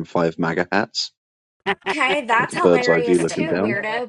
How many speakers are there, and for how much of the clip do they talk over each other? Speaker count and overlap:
two, about 34%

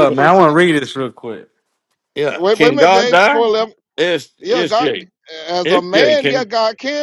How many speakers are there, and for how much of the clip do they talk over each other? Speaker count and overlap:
three, about 42%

